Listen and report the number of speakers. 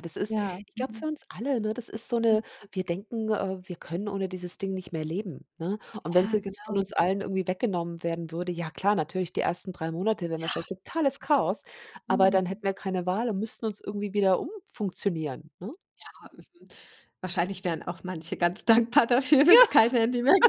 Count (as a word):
two